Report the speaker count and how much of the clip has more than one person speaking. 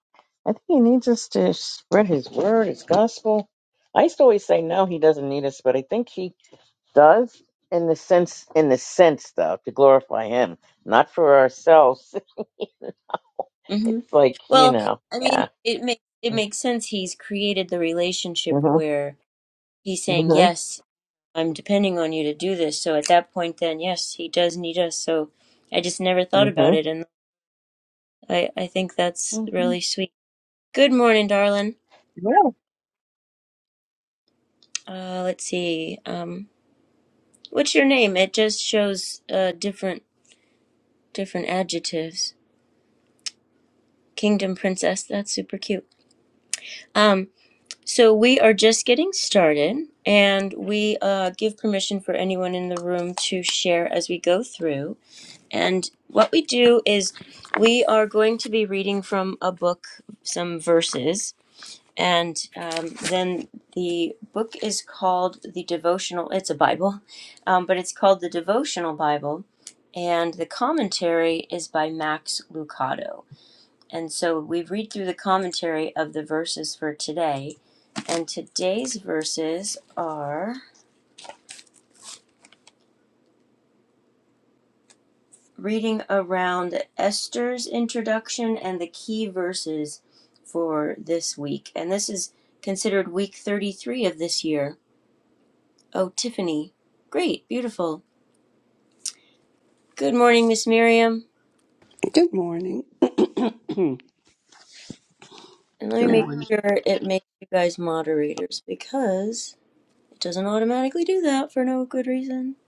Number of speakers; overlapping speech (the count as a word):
three, about 2%